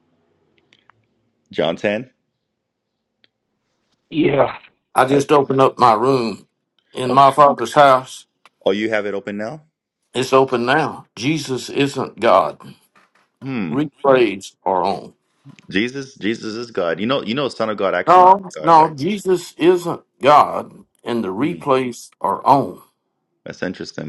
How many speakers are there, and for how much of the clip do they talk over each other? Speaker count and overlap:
2, about 6%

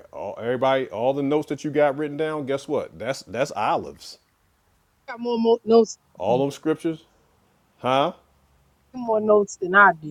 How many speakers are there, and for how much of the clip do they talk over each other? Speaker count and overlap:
2, no overlap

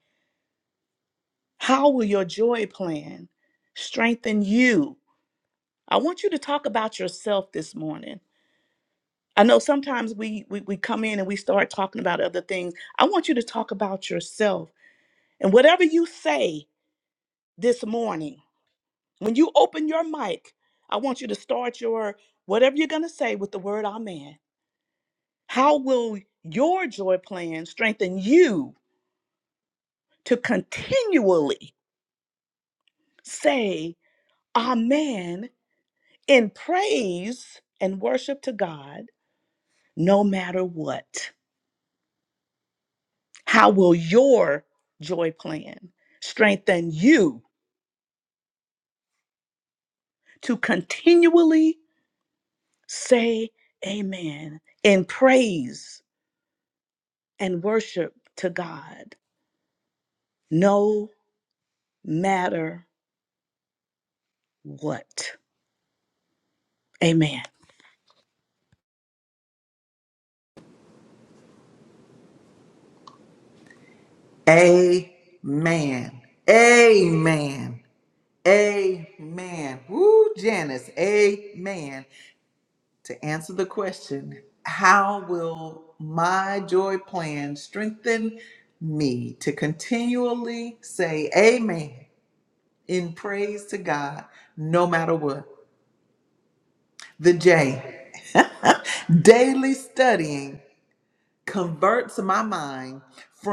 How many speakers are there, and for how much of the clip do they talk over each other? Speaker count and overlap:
2, no overlap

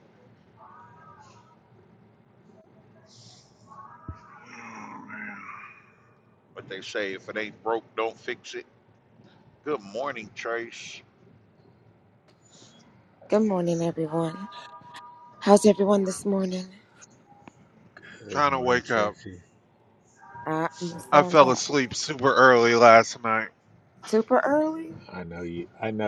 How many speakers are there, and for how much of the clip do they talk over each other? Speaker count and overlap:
4, about 6%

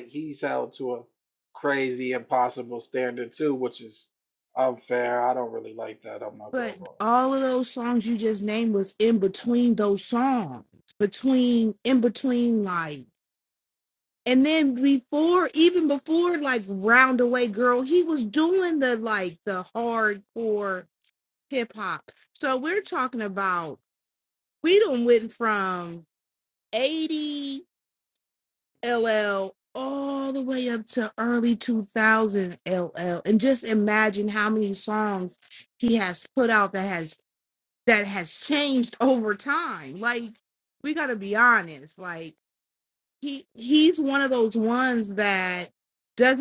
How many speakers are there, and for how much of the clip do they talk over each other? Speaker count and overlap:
2, about 1%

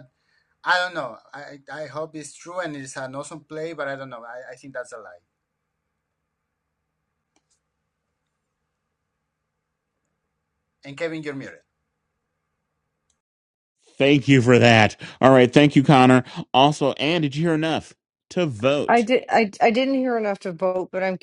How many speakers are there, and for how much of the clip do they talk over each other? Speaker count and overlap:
3, about 1%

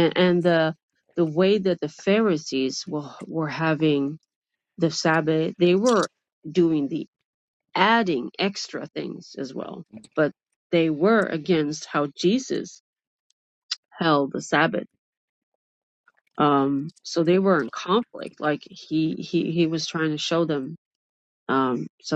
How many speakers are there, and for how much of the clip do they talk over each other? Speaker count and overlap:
1, no overlap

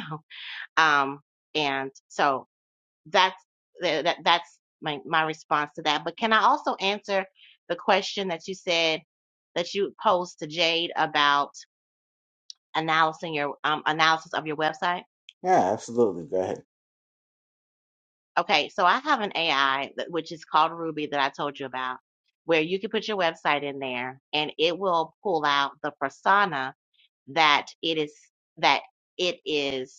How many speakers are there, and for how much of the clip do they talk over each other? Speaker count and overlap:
2, no overlap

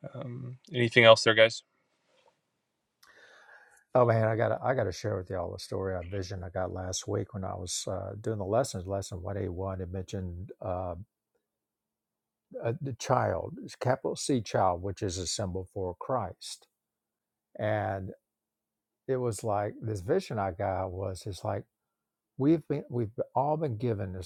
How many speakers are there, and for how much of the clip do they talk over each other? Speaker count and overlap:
2, no overlap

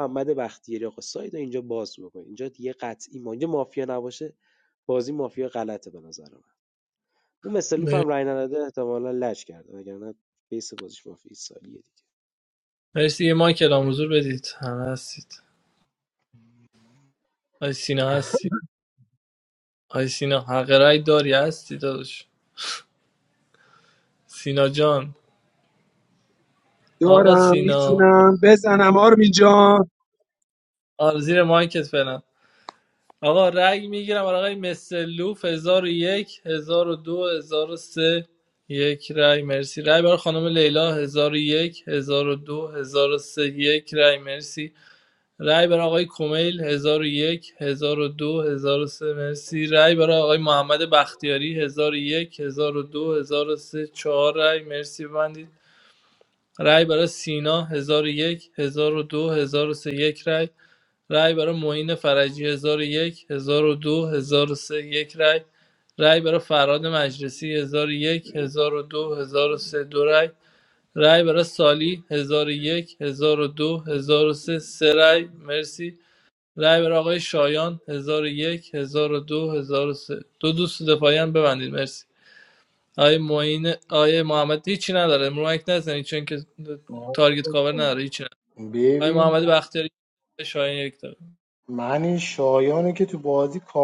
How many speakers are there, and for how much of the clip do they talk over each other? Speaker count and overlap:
4, about 2%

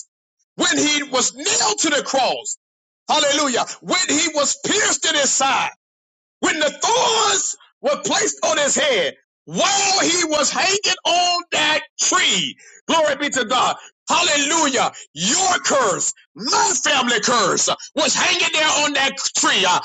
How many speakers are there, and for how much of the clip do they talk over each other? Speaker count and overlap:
1, no overlap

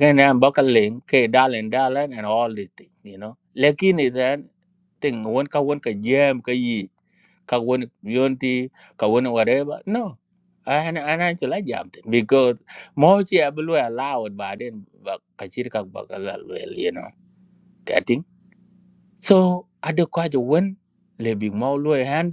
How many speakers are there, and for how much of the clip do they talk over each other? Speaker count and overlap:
1, no overlap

